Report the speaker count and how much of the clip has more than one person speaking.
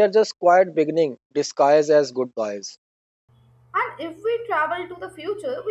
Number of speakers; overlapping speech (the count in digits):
2, no overlap